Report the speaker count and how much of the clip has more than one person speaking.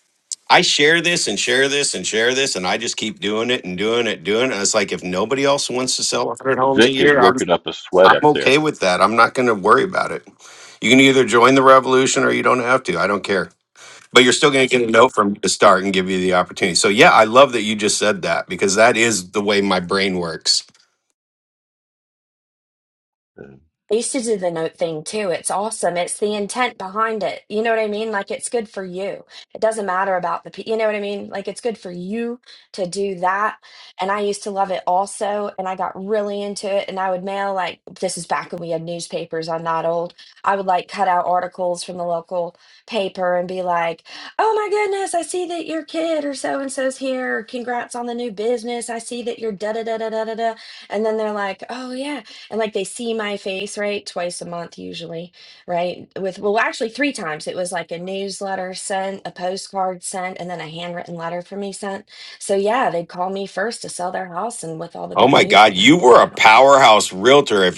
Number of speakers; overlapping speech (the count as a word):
three, about 4%